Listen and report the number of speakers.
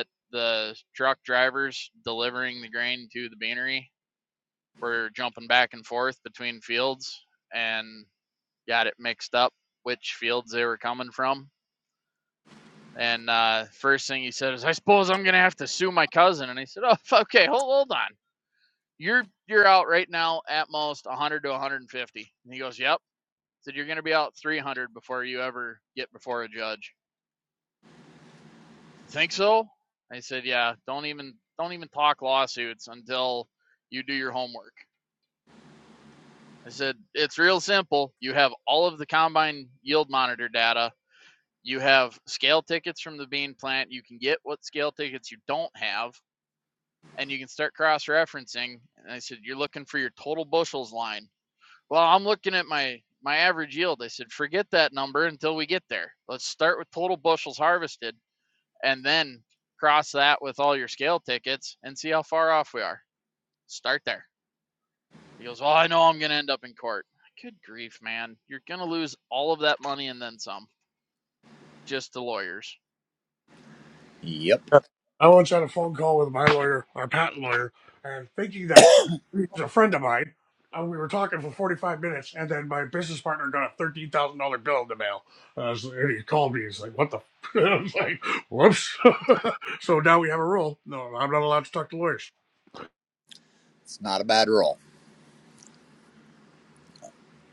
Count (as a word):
three